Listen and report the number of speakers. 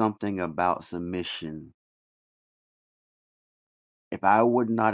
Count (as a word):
one